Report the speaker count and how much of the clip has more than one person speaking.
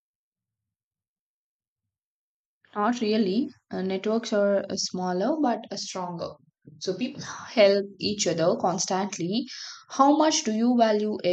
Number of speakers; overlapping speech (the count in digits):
1, no overlap